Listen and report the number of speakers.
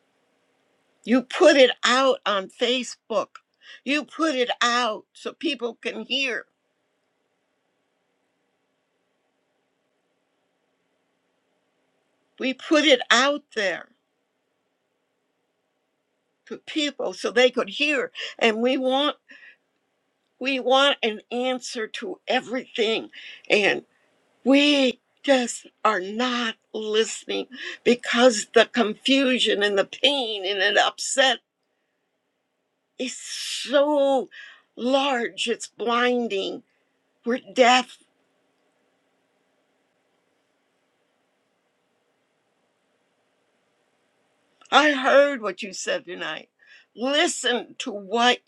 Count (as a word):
one